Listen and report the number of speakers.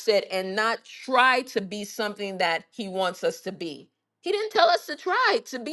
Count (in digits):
1